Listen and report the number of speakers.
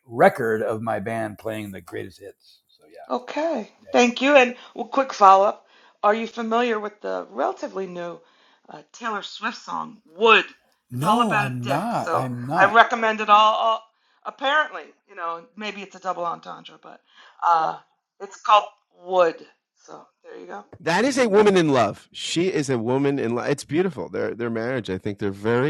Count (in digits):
3